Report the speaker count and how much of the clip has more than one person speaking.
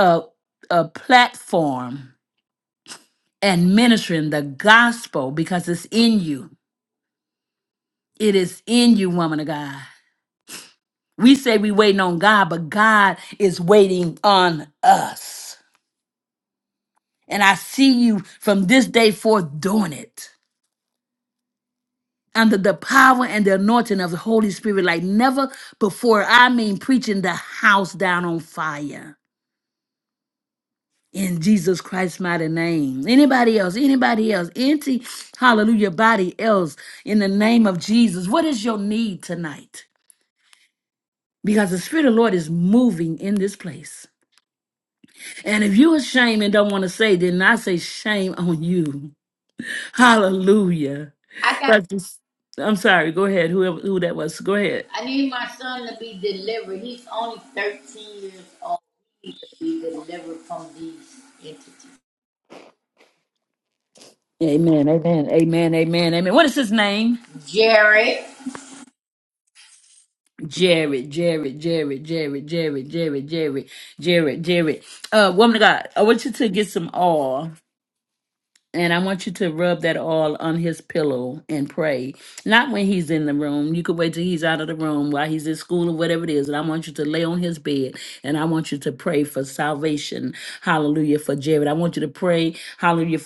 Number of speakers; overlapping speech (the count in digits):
2, under 1%